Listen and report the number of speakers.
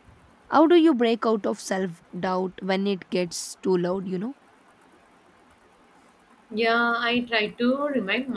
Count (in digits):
2